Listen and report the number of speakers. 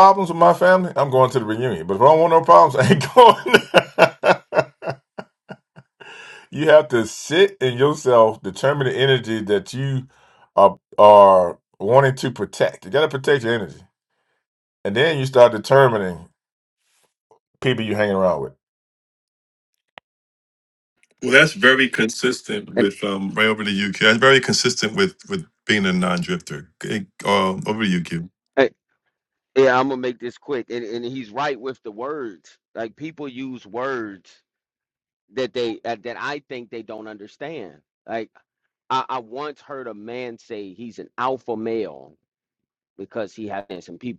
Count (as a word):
three